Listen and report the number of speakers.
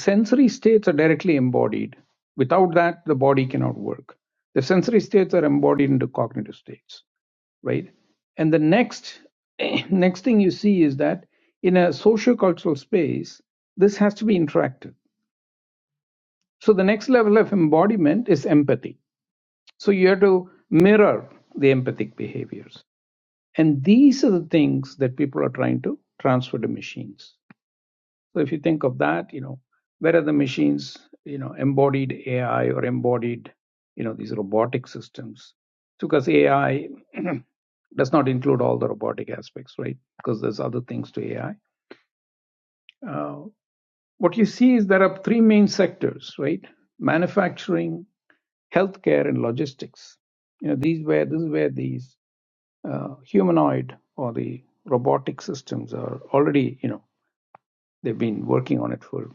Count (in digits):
1